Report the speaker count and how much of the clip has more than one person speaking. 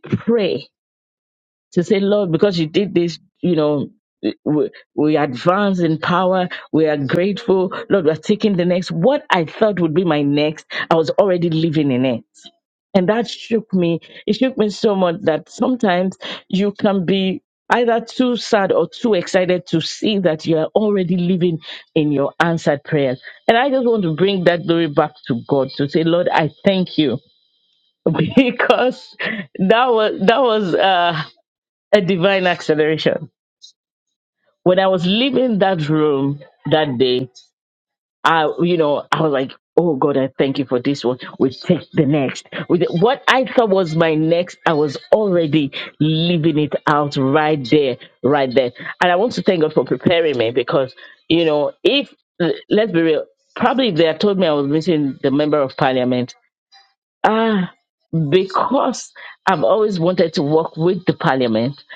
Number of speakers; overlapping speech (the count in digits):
1, no overlap